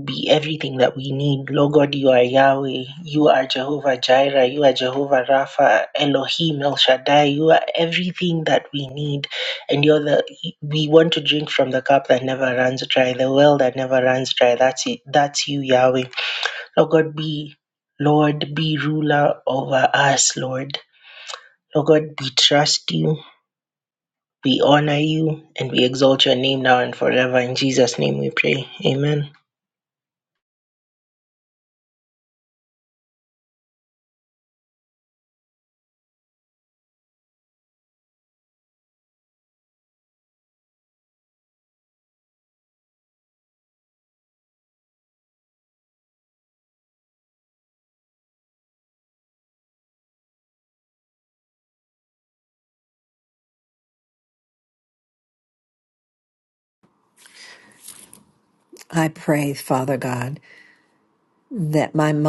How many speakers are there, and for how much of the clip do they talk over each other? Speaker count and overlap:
two, no overlap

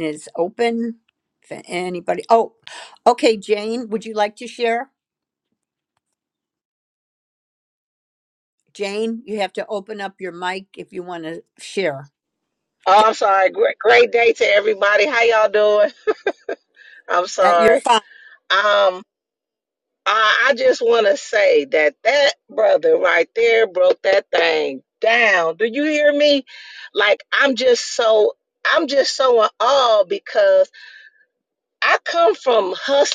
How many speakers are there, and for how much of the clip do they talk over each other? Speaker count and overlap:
two, about 1%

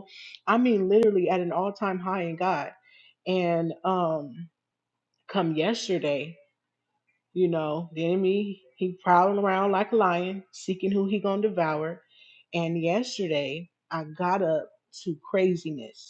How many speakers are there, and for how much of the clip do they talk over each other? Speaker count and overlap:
one, no overlap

